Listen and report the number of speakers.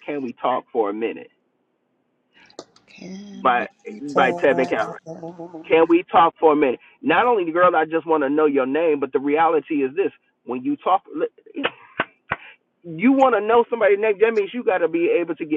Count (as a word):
two